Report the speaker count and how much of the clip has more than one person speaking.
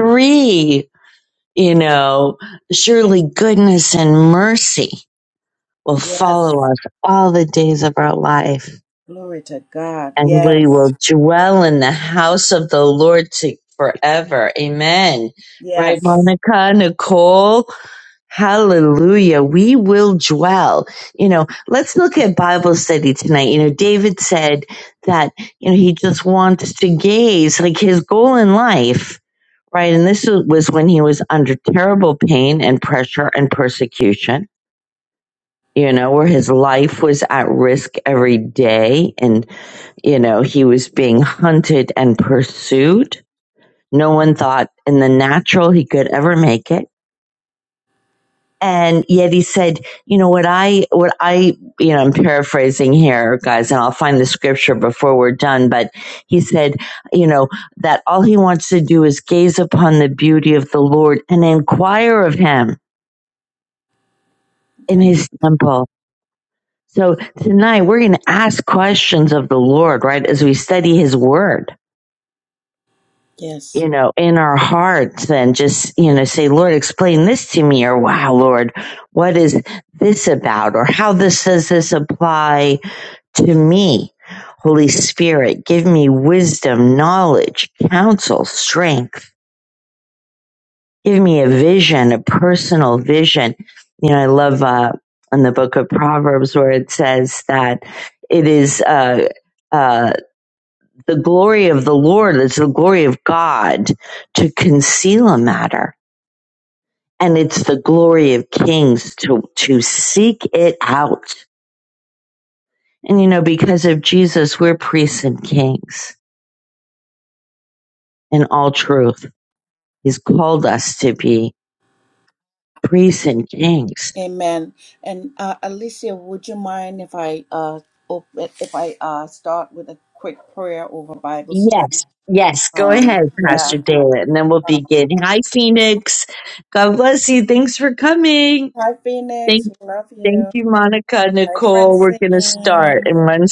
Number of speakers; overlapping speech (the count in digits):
2, about 4%